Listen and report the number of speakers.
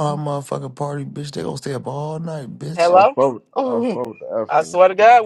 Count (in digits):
3